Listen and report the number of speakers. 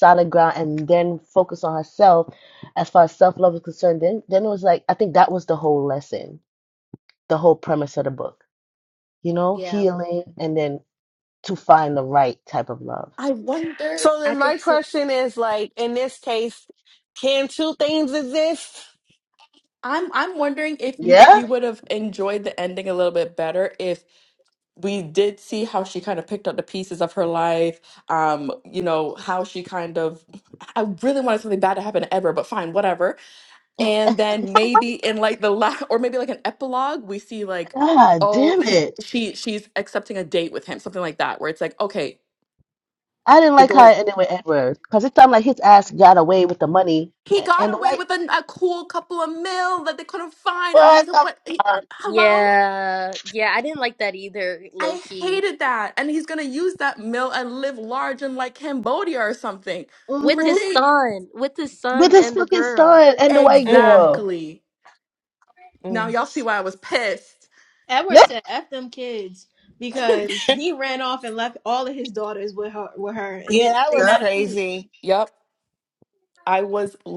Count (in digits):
5